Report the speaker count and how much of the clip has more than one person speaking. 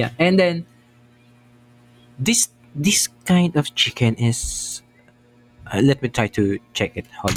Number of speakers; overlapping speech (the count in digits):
1, no overlap